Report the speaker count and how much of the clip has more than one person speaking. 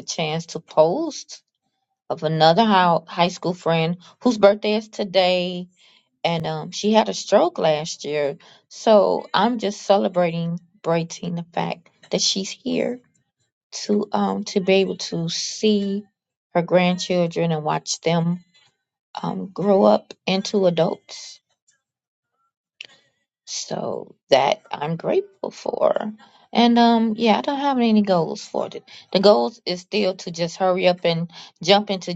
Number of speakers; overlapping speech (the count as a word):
one, no overlap